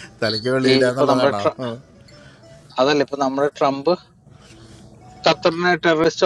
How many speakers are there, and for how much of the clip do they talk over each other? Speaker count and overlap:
two, about 14%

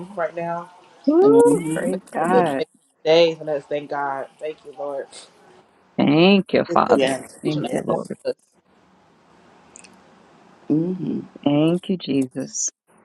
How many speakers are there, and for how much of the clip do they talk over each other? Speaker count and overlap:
three, about 19%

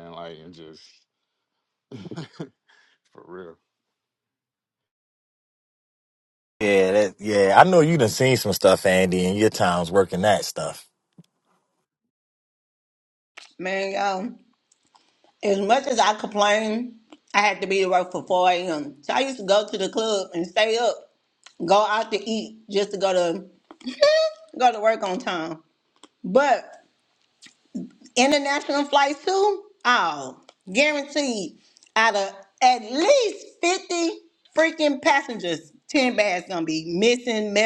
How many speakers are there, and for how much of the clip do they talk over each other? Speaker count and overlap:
three, no overlap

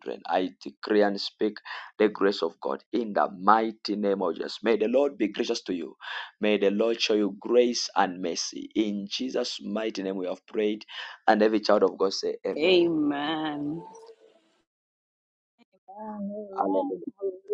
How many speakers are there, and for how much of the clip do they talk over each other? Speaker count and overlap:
three, about 5%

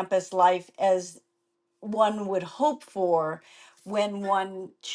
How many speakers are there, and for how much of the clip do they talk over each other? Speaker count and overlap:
one, no overlap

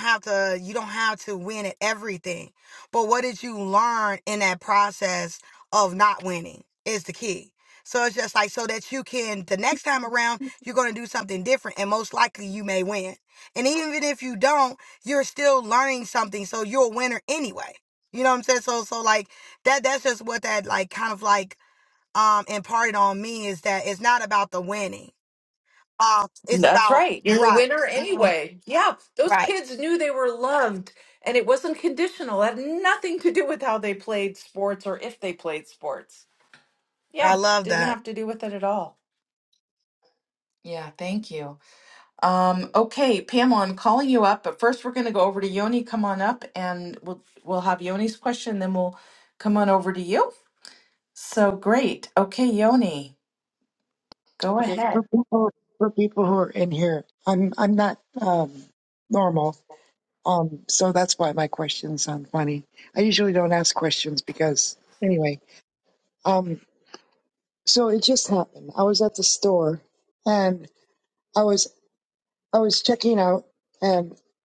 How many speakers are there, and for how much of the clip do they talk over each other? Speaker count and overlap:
three, about 4%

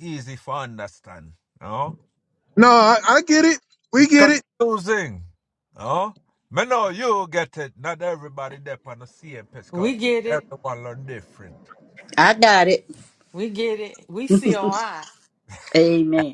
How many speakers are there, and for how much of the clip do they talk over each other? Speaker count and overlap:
four, about 5%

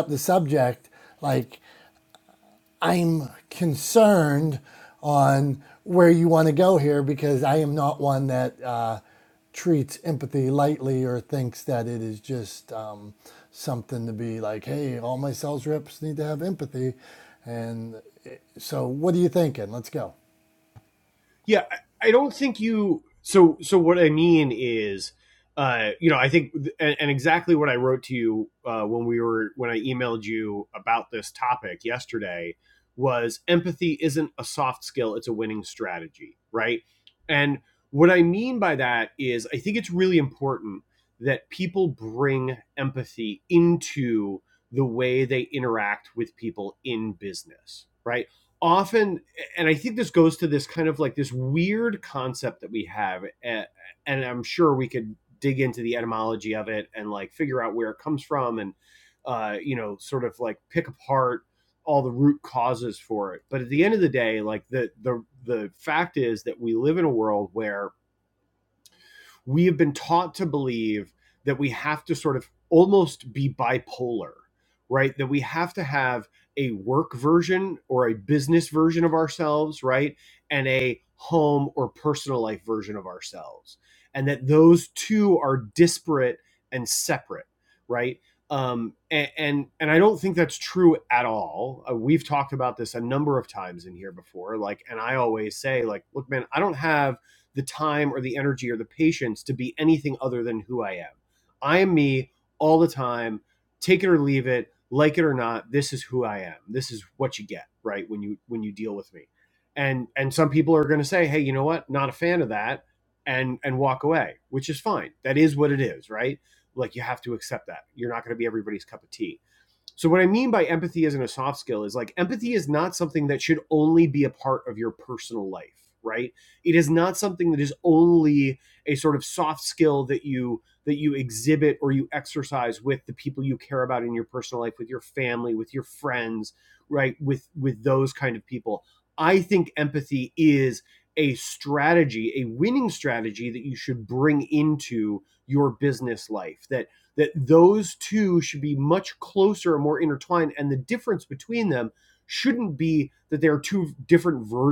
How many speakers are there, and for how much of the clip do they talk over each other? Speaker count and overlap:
two, no overlap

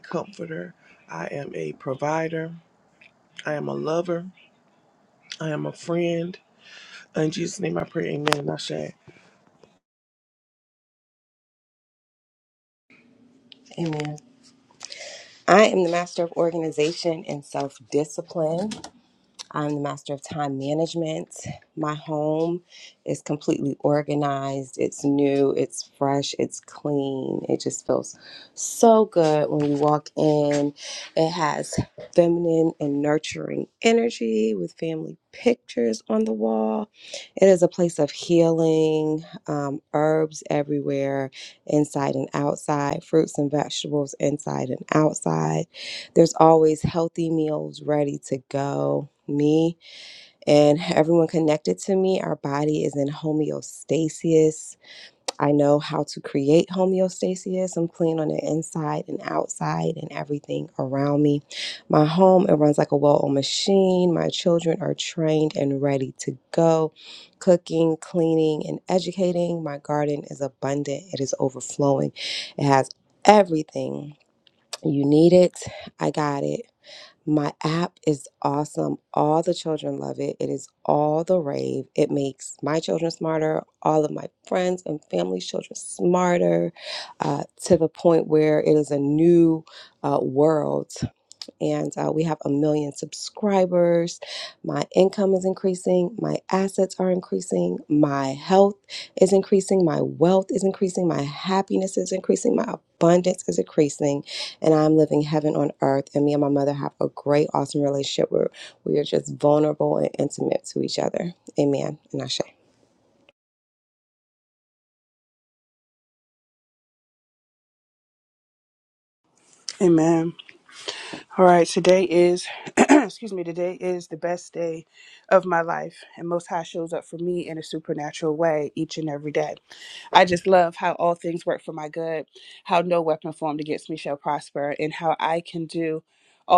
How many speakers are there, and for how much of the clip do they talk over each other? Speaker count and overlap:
three, no overlap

